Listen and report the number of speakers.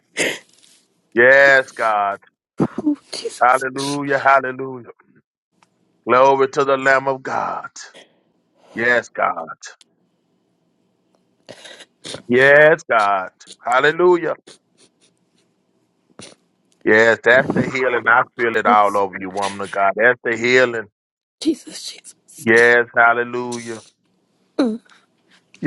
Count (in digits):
2